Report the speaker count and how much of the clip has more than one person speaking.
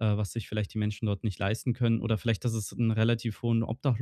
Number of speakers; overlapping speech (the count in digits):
1, no overlap